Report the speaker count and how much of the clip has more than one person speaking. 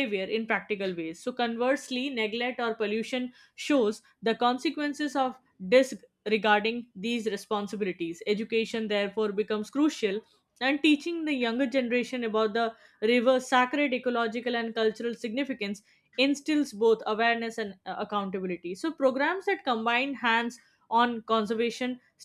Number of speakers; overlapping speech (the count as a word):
one, no overlap